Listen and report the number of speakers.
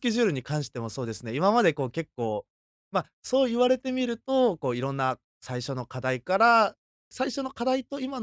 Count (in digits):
1